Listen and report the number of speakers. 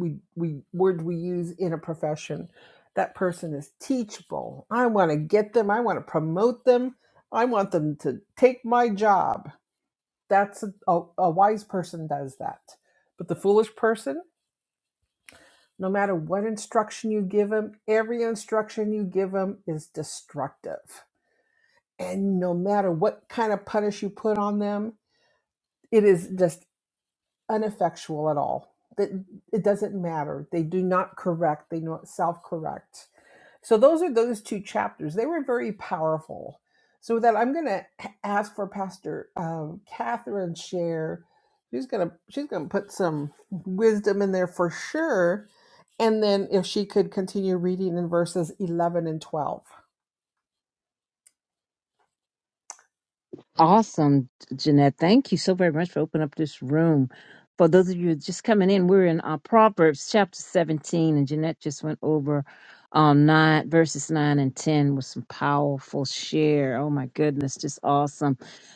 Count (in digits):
2